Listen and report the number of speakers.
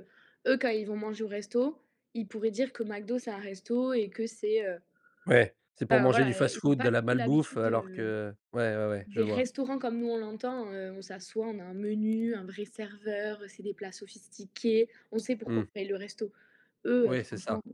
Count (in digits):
2